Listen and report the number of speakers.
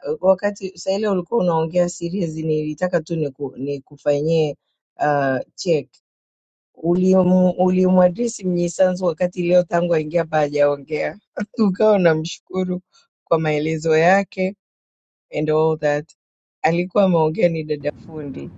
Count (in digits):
1